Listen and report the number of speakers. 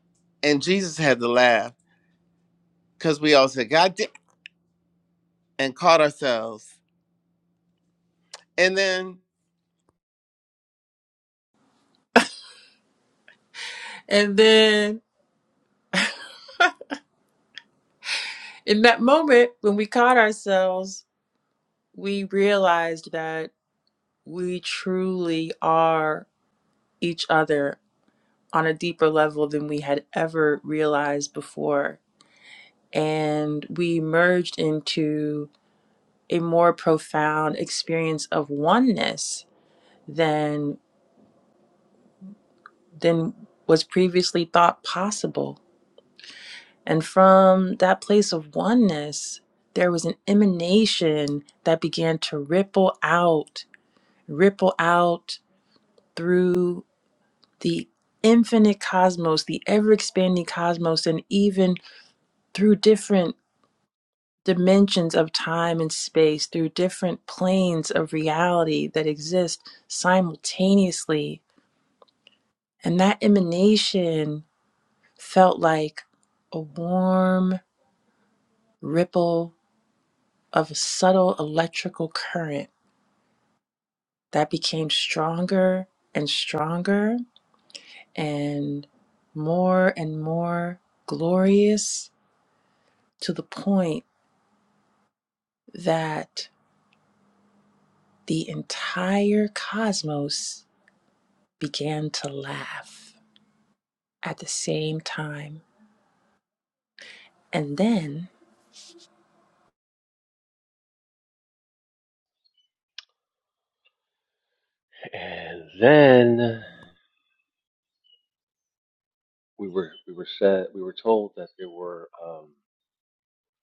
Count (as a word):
three